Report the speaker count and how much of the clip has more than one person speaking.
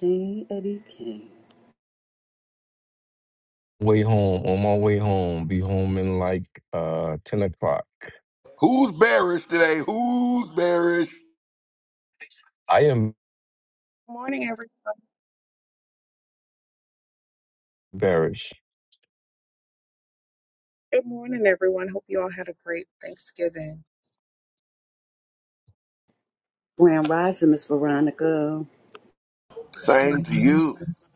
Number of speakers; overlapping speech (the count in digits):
4, about 2%